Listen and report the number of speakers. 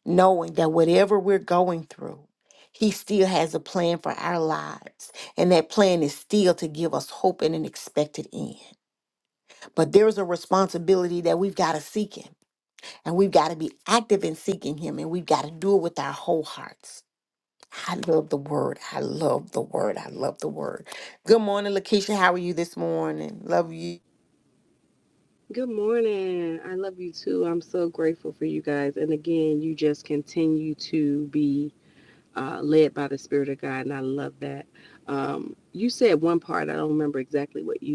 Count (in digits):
2